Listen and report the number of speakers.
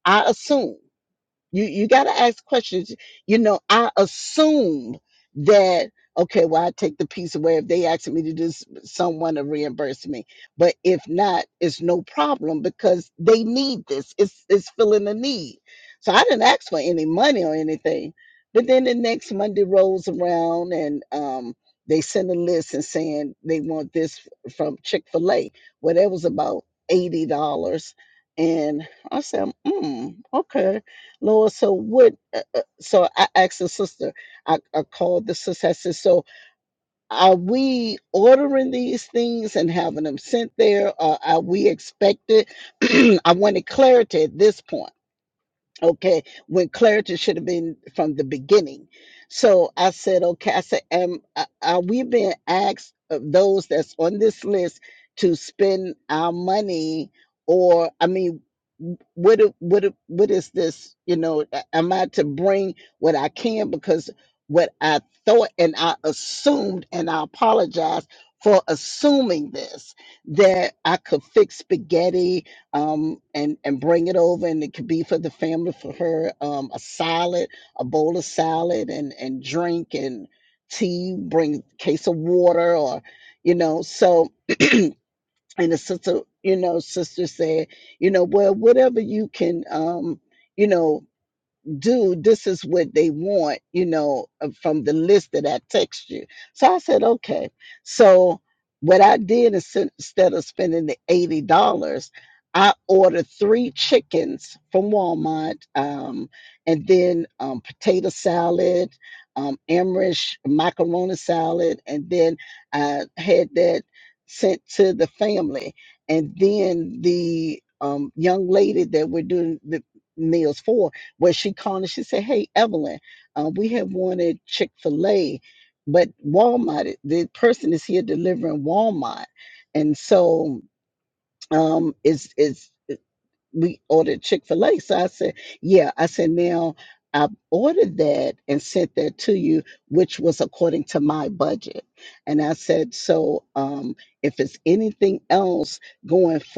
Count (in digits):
1